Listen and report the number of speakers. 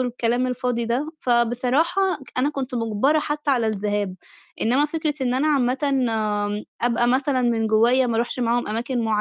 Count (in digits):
1